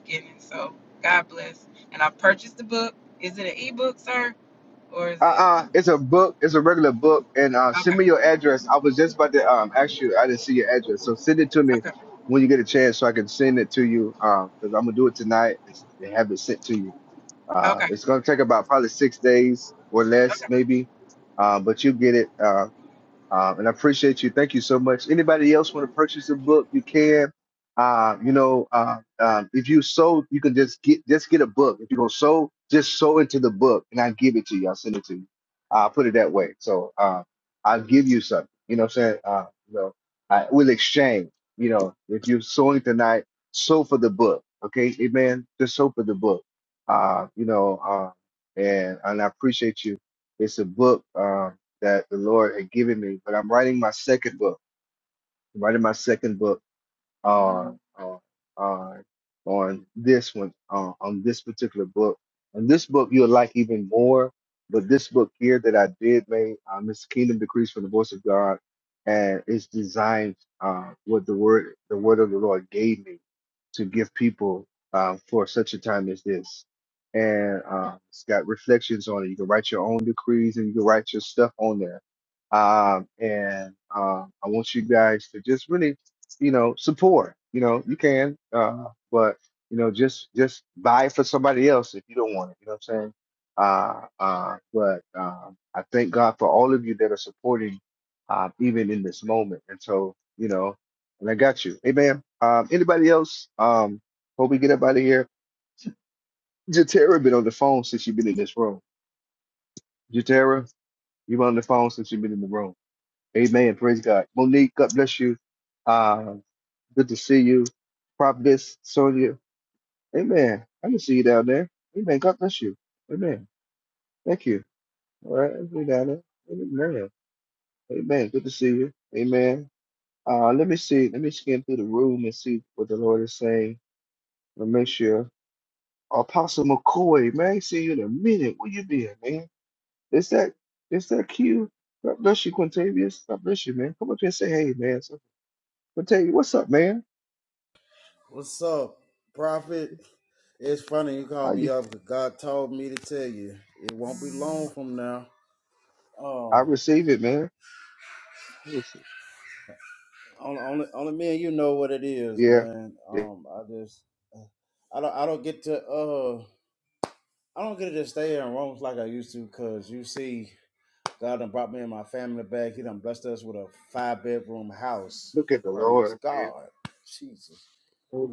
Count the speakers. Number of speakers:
three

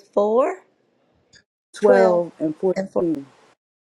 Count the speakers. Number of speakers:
two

